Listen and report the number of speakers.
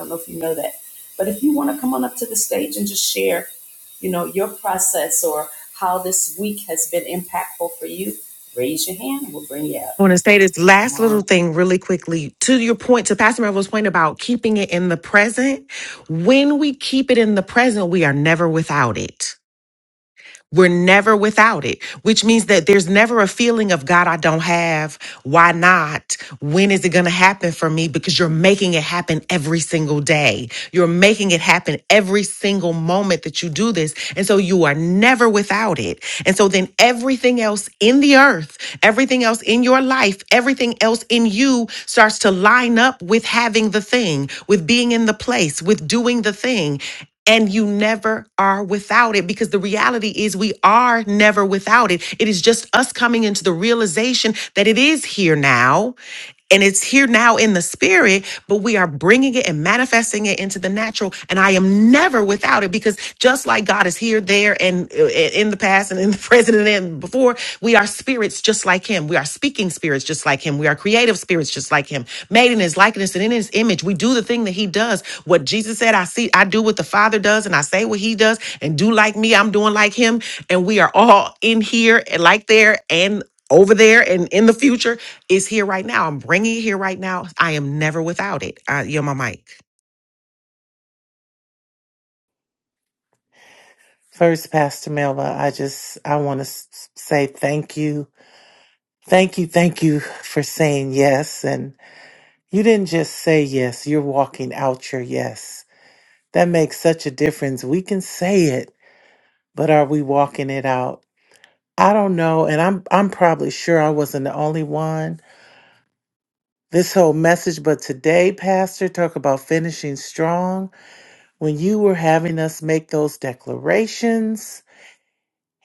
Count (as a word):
three